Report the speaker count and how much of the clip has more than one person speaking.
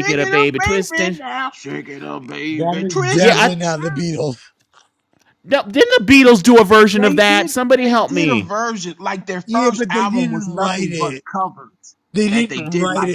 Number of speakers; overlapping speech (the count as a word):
three, about 48%